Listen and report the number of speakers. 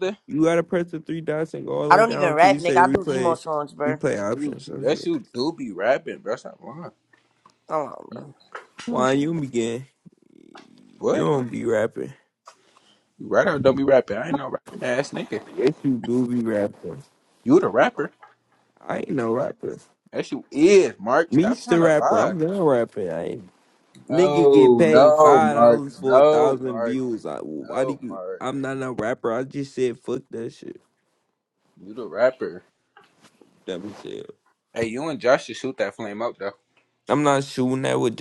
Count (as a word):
three